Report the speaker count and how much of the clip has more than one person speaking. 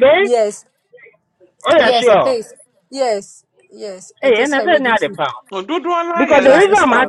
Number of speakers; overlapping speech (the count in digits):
3, about 37%